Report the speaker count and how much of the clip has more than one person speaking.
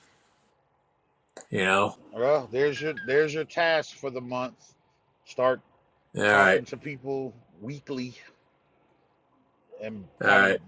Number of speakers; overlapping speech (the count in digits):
2, about 6%